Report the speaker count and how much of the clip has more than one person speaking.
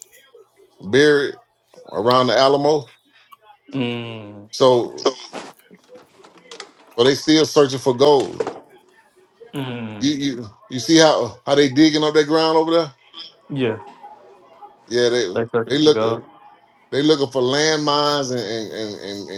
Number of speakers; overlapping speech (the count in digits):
2, about 5%